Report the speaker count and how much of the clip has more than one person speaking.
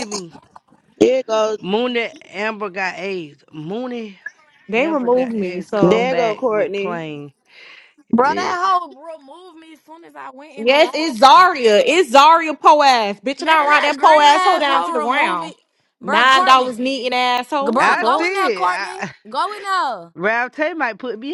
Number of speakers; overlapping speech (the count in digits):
4, about 36%